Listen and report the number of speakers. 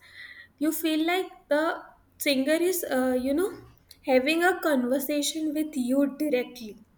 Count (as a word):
one